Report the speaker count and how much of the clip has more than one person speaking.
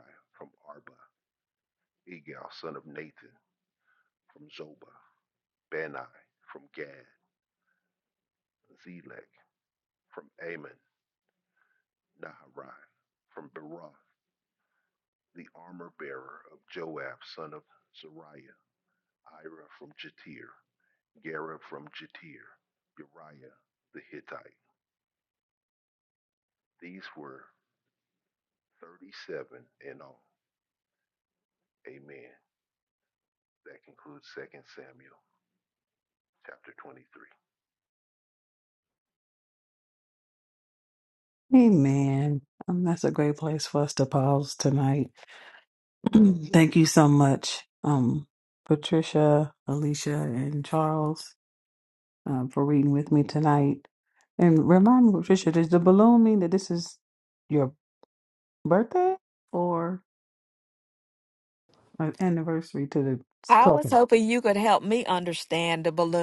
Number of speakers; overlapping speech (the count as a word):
three, under 1%